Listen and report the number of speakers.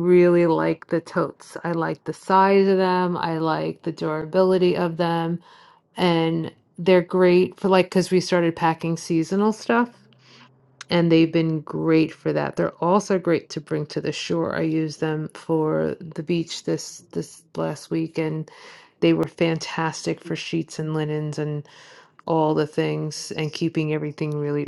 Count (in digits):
1